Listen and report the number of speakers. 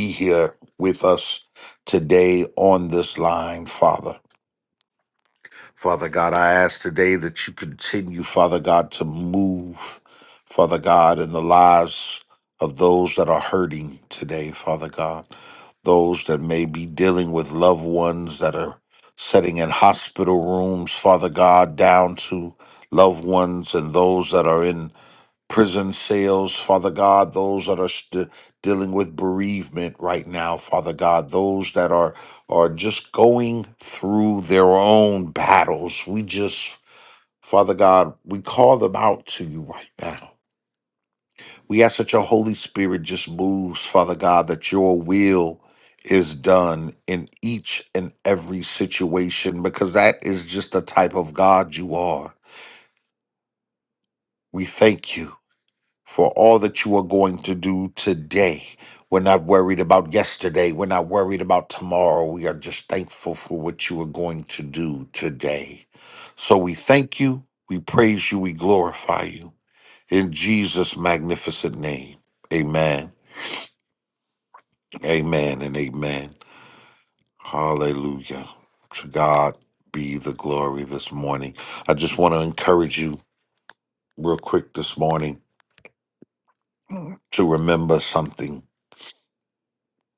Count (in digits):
1